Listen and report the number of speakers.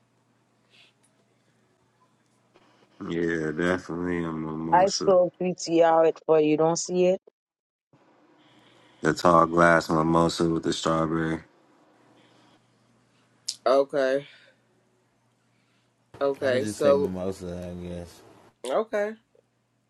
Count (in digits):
4